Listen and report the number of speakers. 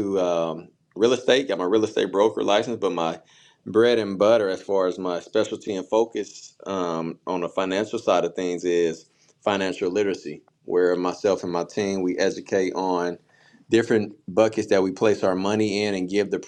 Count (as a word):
one